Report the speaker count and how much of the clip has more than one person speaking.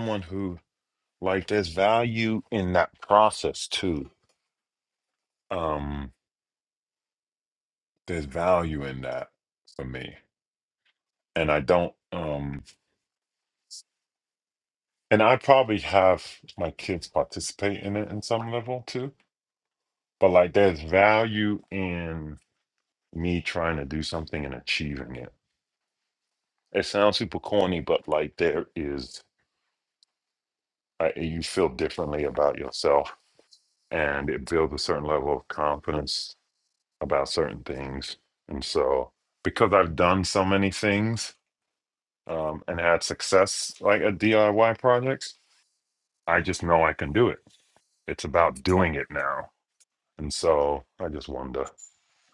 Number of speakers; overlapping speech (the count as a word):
one, no overlap